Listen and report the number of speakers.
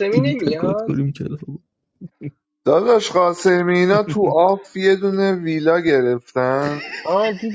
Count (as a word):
three